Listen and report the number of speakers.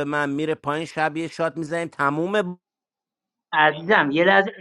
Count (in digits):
2